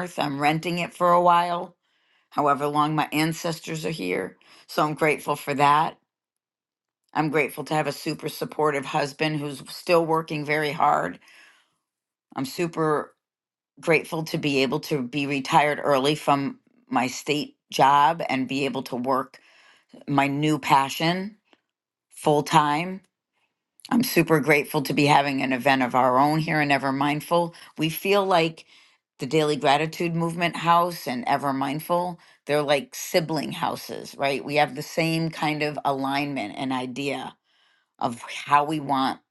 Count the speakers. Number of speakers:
one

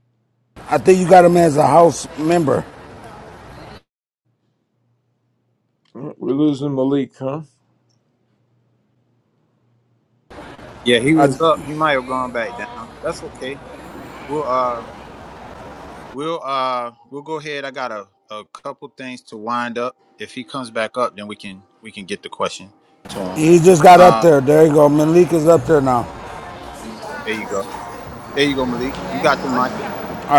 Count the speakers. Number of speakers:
three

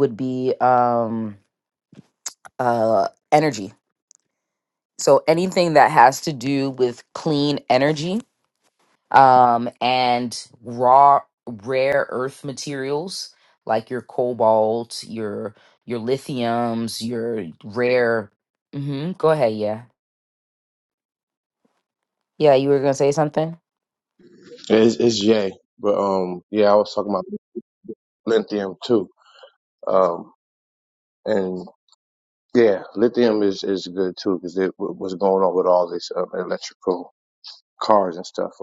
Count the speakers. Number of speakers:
two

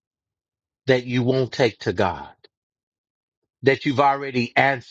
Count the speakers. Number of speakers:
one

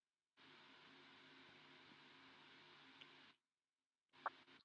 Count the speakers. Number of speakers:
zero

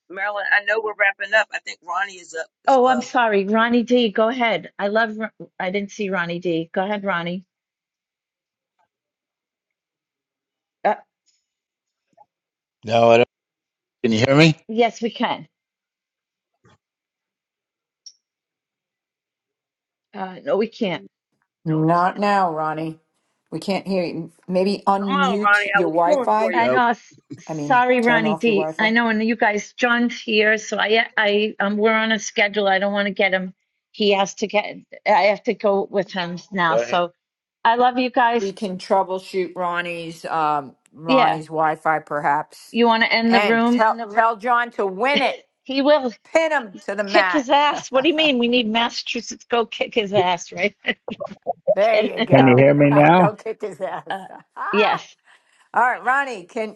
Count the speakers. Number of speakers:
four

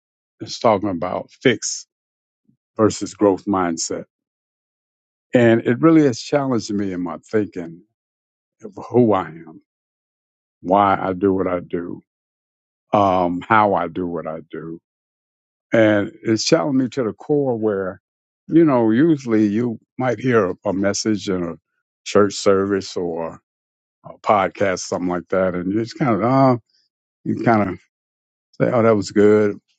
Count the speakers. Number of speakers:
one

